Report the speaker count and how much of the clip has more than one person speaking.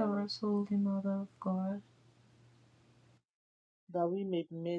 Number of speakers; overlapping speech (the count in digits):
2, about 6%